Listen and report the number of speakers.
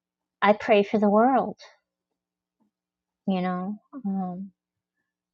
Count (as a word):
one